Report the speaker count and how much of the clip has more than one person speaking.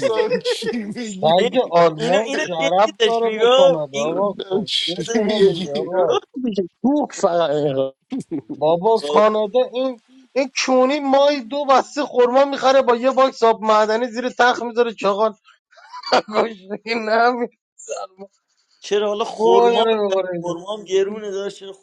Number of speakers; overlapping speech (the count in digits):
4, about 28%